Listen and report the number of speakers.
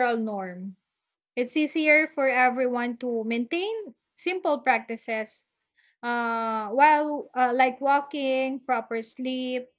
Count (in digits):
1